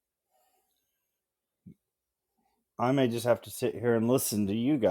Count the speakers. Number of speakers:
1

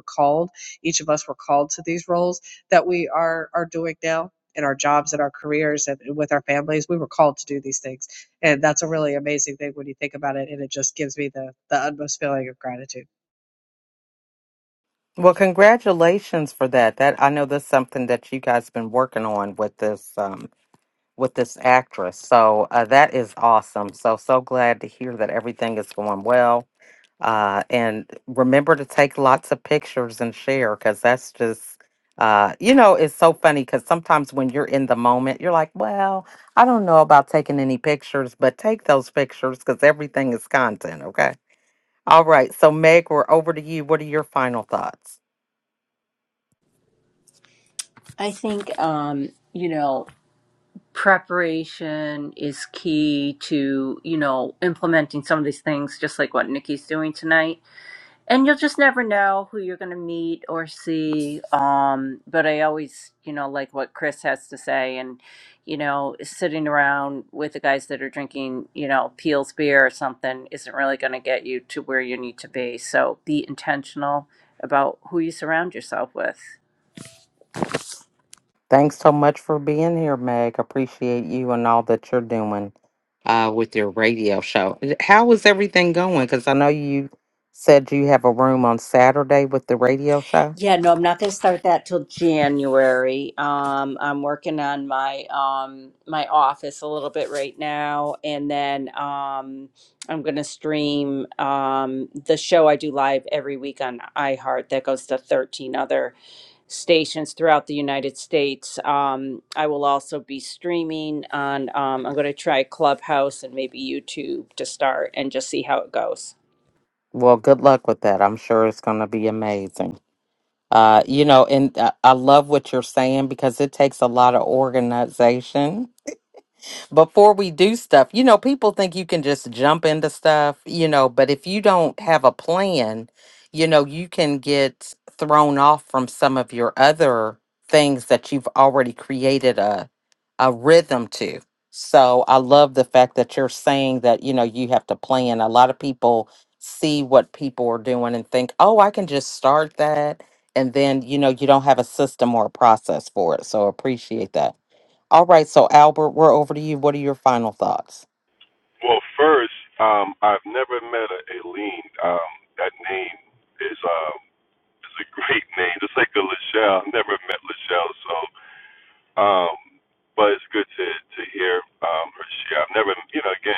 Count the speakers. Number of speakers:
4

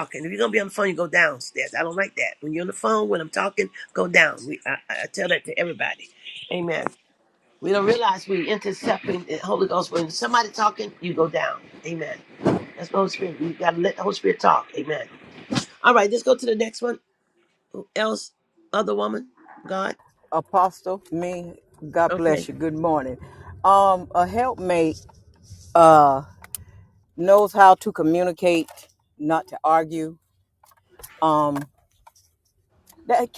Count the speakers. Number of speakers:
2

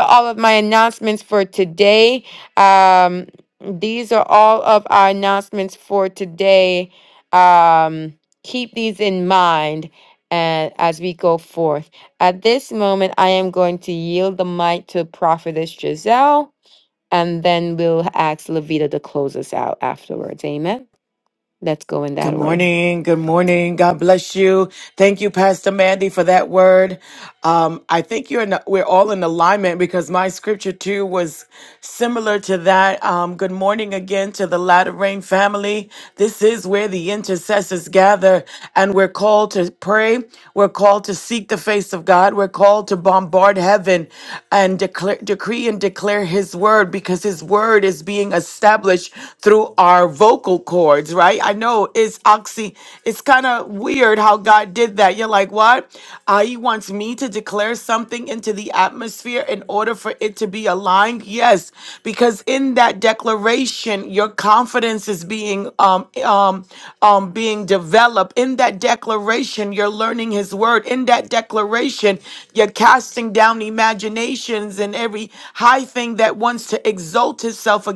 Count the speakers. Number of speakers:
2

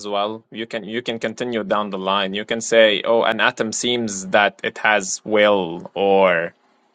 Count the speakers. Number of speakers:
1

